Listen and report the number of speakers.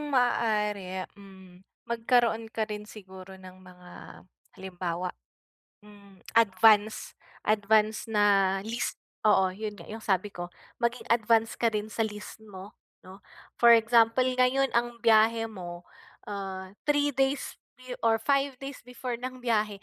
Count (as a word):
one